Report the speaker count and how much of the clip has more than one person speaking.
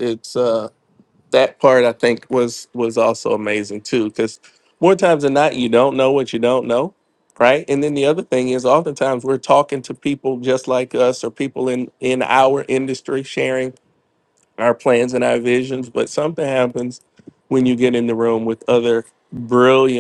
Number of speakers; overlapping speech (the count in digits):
1, no overlap